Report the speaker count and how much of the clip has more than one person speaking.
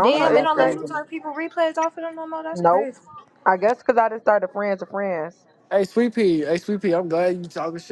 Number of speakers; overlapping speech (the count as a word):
three, about 17%